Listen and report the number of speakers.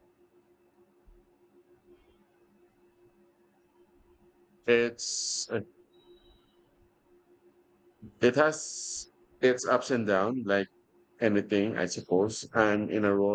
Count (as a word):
one